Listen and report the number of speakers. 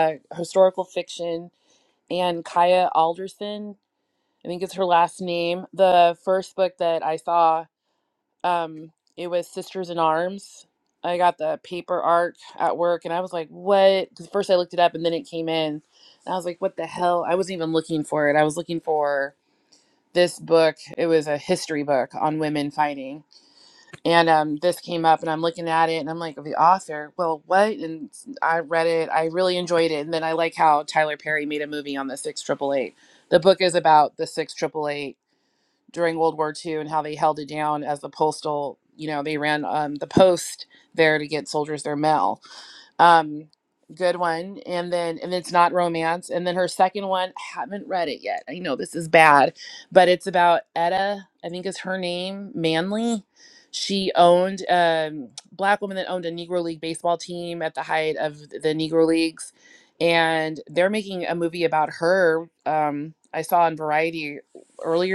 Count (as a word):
one